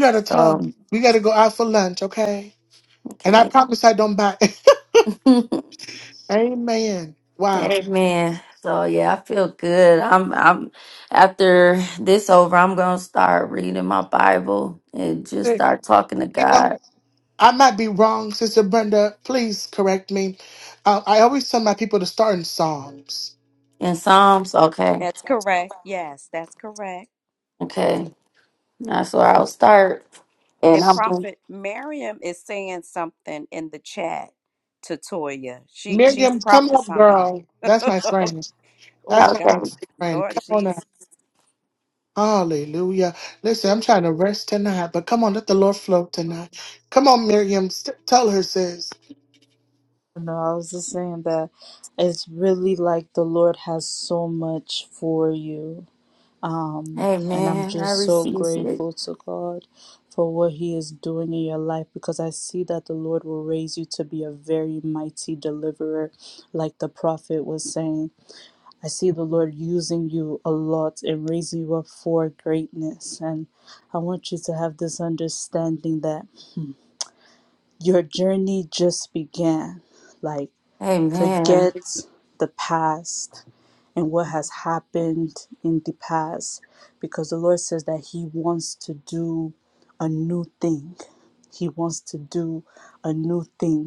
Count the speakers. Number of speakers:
4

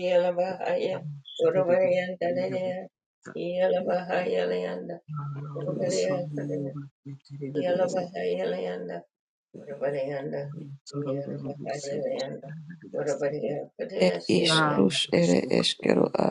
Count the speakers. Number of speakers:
3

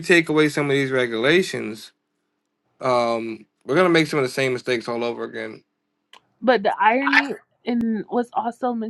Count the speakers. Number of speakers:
2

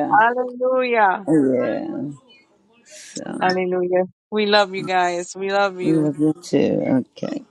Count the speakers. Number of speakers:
2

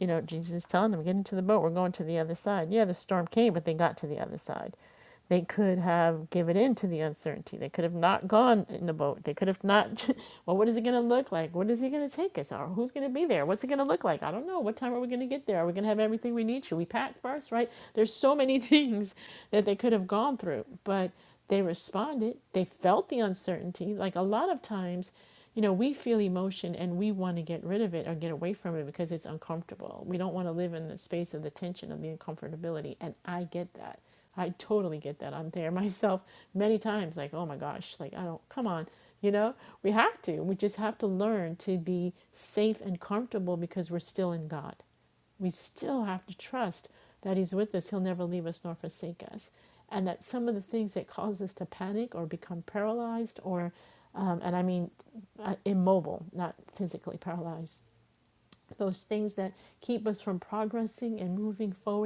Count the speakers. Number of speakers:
1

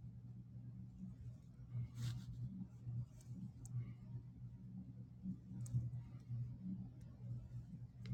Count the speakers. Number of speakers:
0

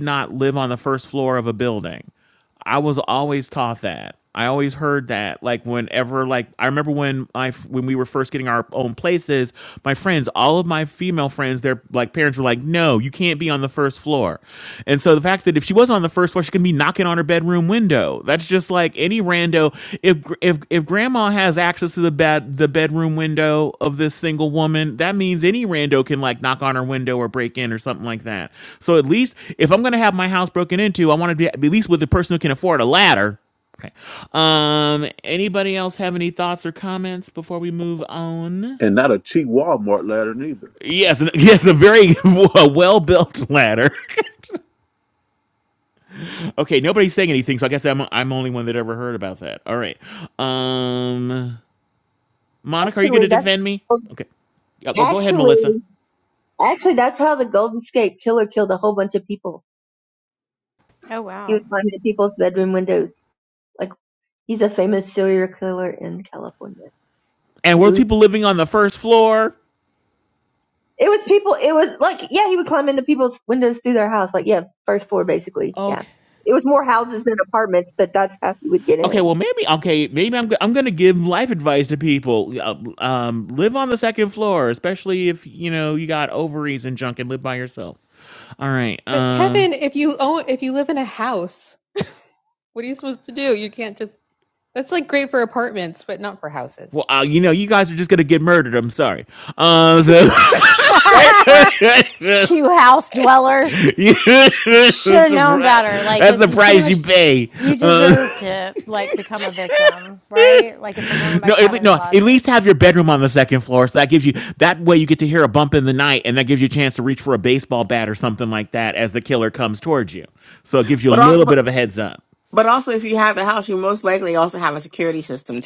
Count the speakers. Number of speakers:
6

